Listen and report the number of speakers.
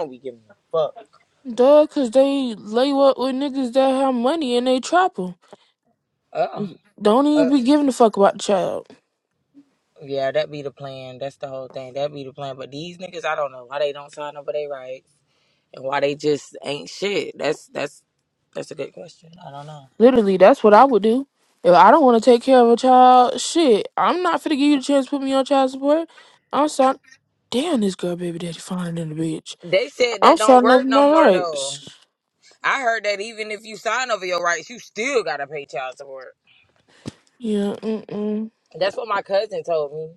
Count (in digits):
2